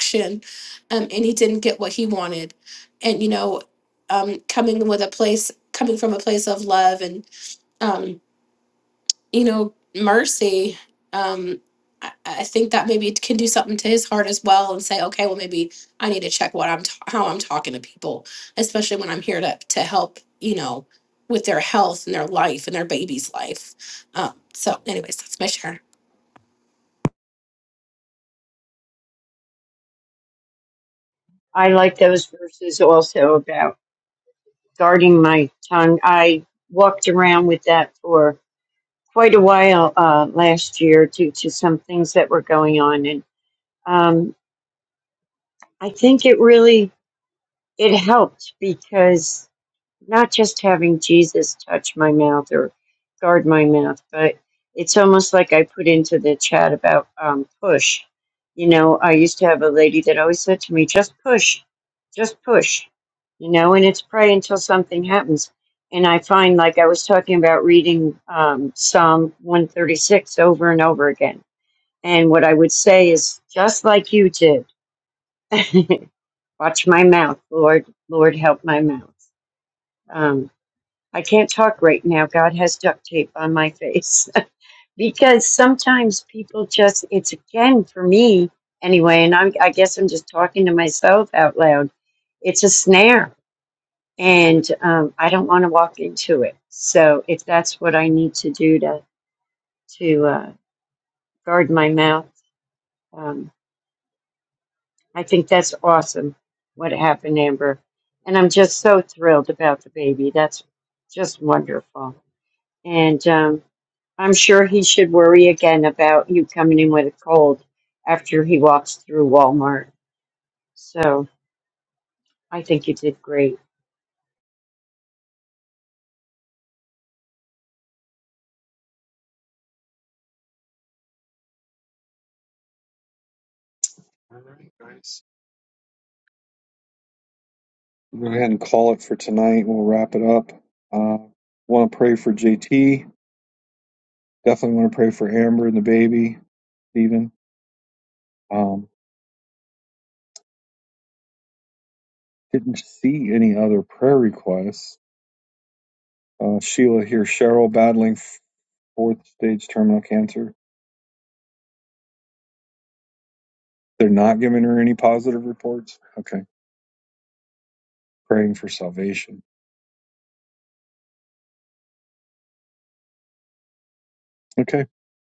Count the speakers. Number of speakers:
3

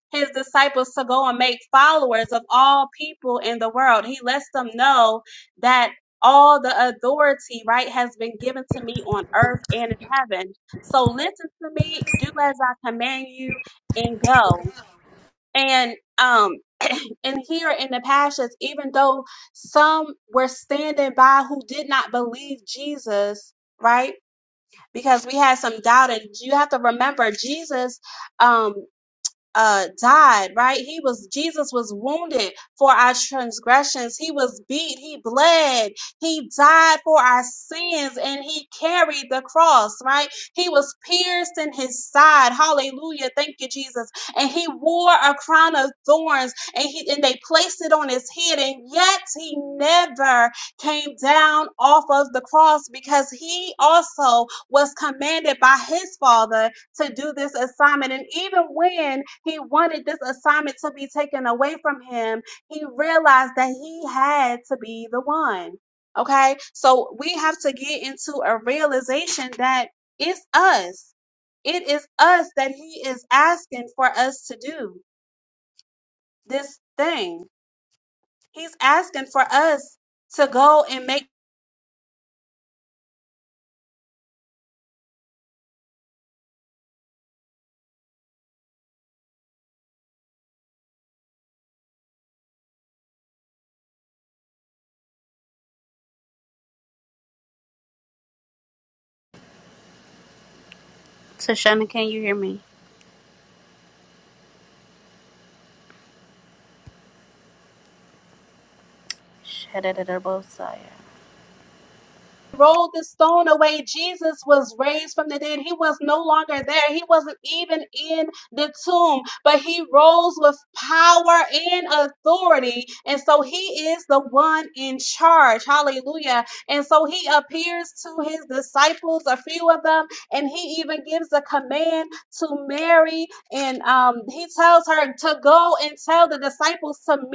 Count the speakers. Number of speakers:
2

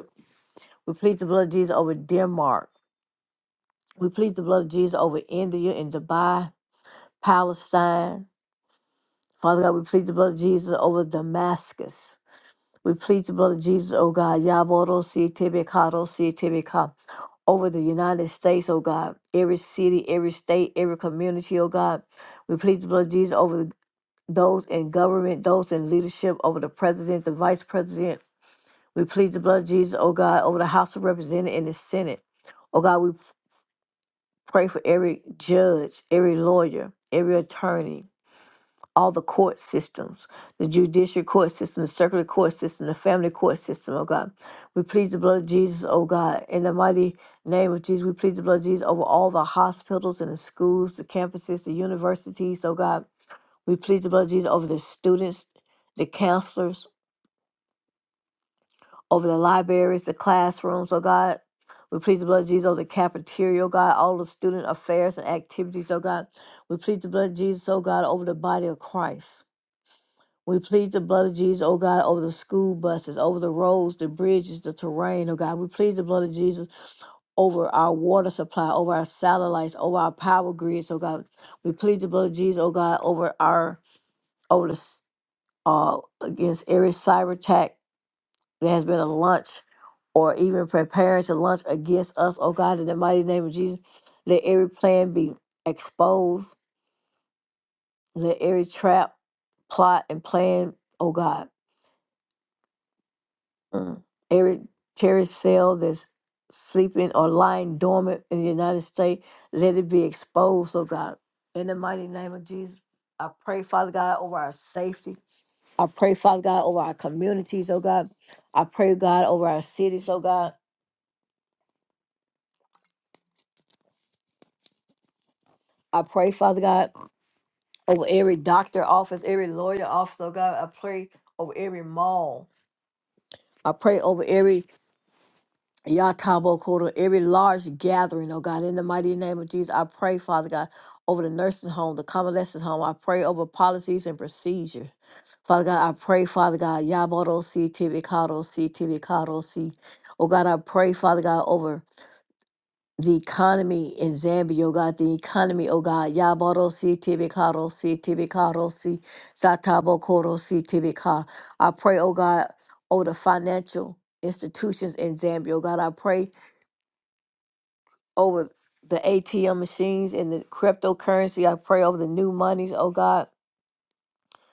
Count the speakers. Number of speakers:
1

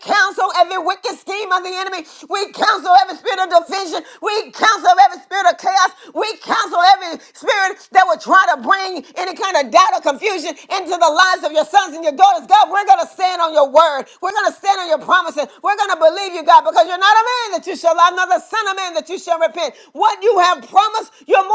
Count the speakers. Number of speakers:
1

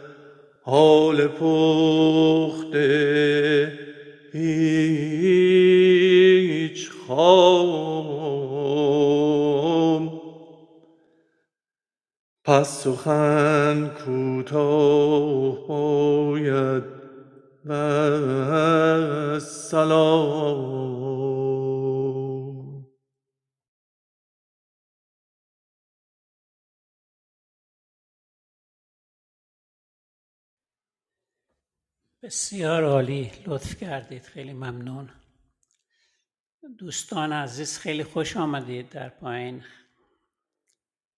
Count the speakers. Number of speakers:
2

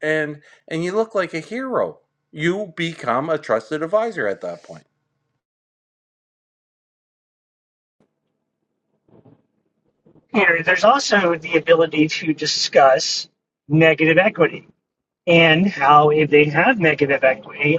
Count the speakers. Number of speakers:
2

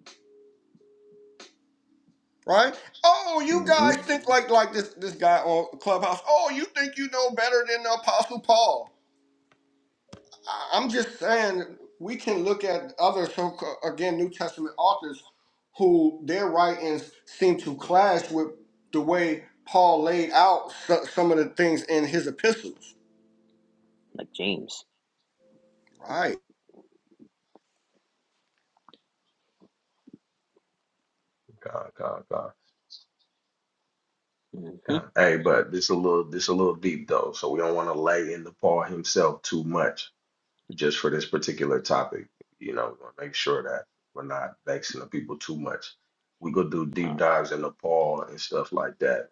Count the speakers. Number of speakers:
3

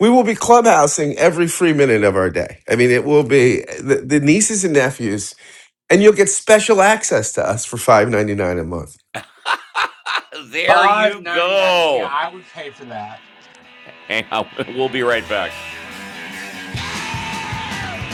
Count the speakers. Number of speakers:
3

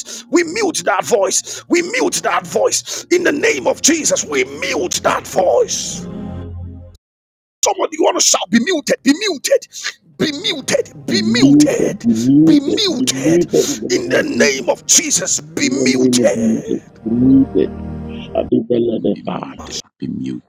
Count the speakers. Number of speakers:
3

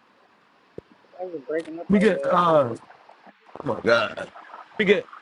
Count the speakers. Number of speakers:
2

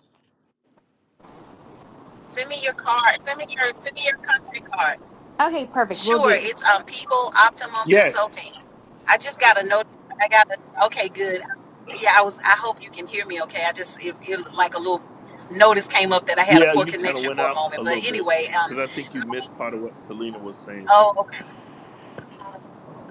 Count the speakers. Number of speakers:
3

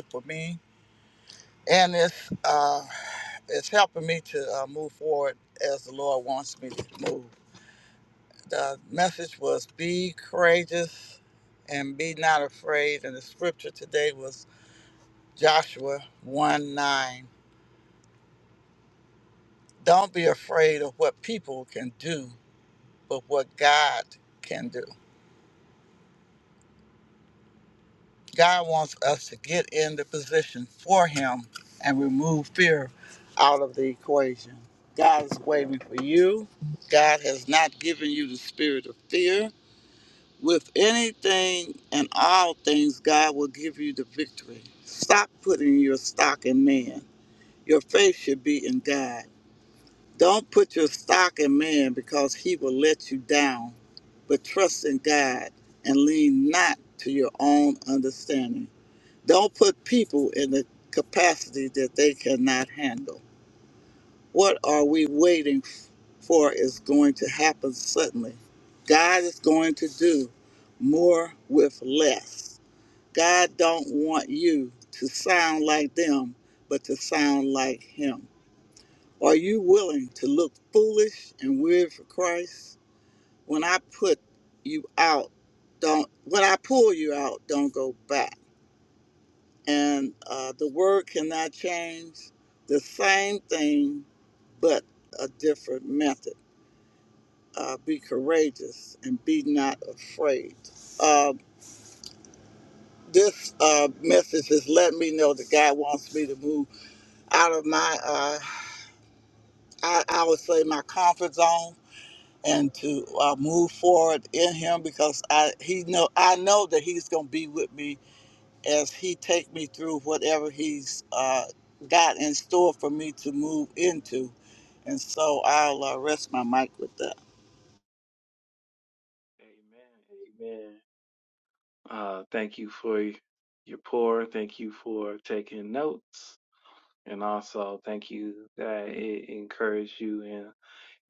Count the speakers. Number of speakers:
2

